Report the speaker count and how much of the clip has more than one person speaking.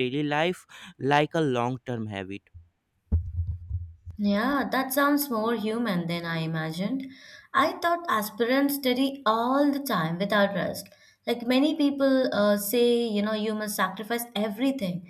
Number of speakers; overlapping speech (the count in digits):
2, no overlap